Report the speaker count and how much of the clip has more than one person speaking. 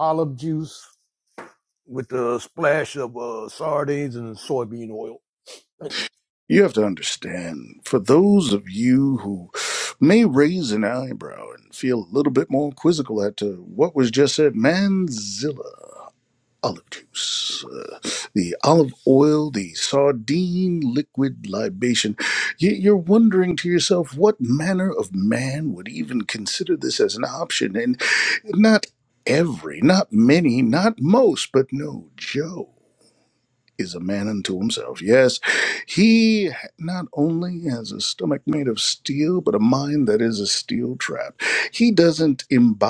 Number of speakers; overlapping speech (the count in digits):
2, no overlap